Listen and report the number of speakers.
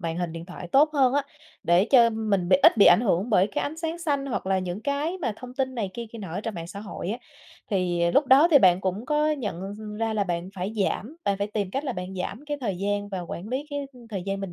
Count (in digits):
1